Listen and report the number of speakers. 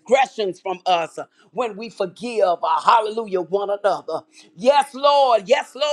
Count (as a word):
one